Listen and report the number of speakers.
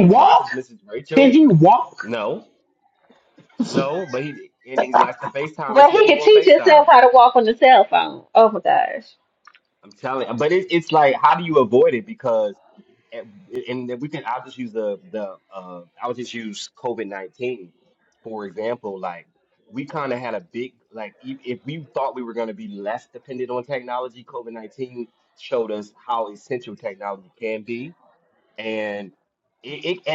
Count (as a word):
three